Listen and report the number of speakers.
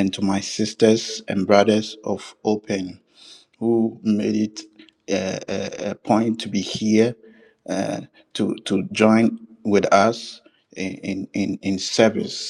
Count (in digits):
1